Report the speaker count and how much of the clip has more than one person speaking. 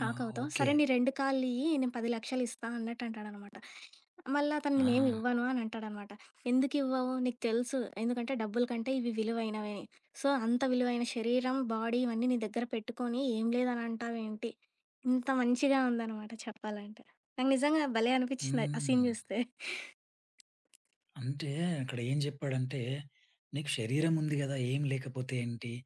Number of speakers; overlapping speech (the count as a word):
two, about 6%